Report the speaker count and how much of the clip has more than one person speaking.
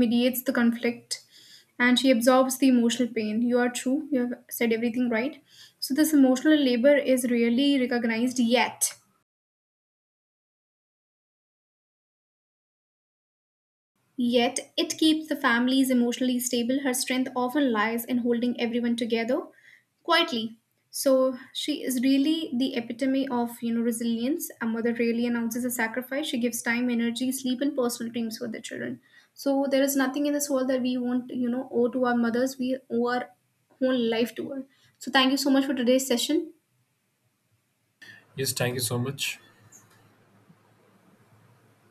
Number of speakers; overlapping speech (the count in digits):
2, no overlap